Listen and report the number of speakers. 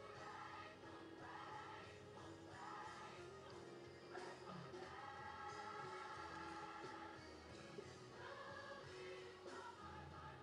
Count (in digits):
0